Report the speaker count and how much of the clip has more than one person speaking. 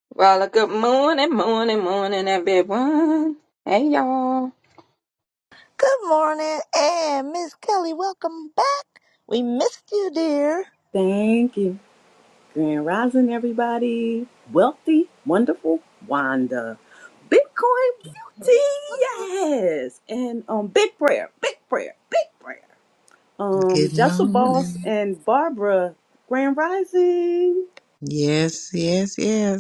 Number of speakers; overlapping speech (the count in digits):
4, about 4%